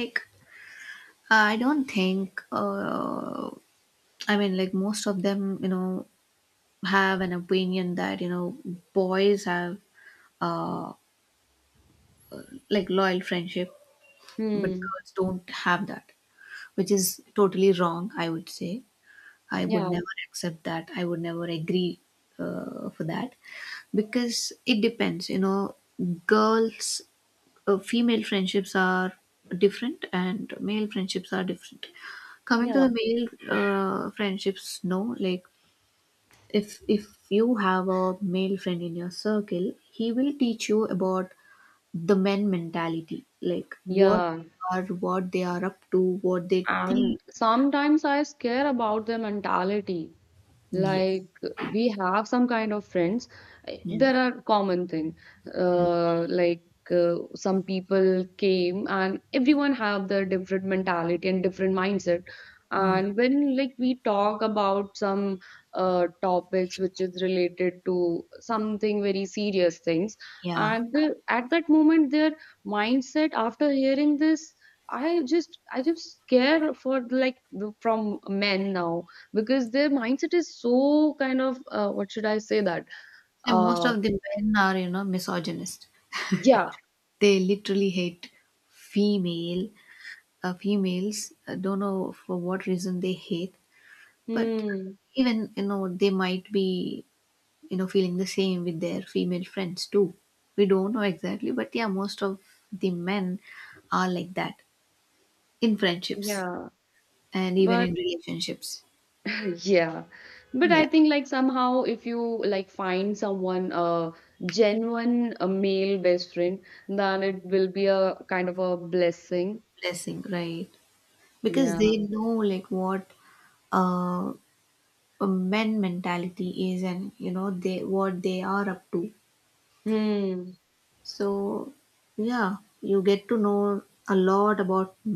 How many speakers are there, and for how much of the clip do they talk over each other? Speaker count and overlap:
2, about 3%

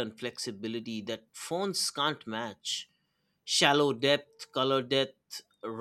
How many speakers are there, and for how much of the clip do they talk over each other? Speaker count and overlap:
1, no overlap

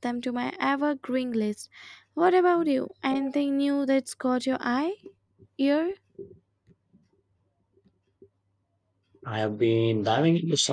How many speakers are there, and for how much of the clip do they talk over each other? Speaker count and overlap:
2, no overlap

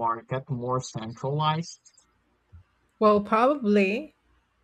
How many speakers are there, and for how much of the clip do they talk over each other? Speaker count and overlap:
2, no overlap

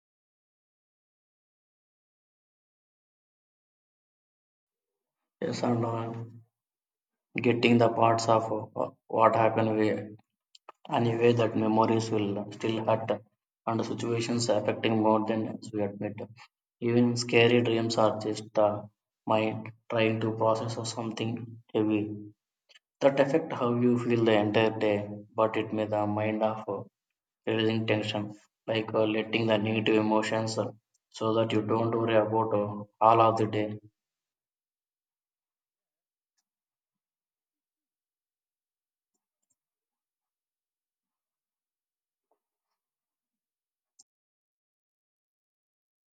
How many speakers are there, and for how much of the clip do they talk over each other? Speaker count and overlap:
1, no overlap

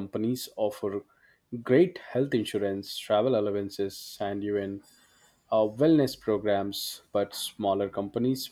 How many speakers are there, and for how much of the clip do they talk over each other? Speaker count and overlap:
1, no overlap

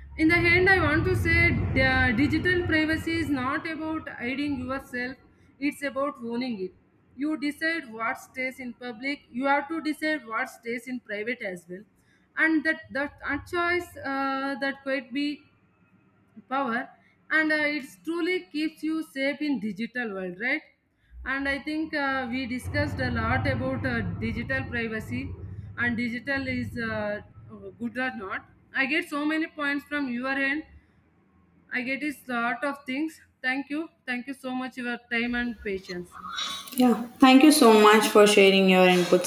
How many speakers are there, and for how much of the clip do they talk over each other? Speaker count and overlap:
2, no overlap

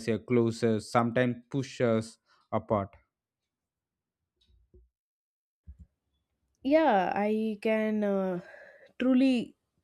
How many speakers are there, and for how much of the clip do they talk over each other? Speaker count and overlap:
2, no overlap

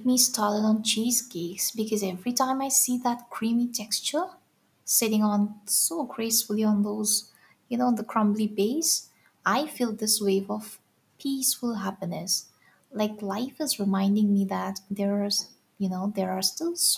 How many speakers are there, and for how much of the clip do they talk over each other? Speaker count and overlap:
1, no overlap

